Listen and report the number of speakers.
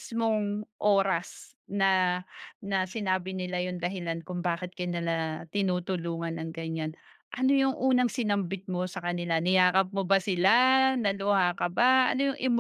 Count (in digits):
1